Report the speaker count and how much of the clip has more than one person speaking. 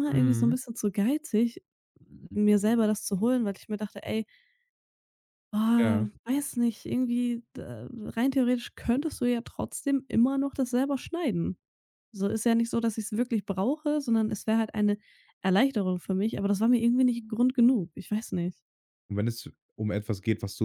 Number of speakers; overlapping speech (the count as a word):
two, about 4%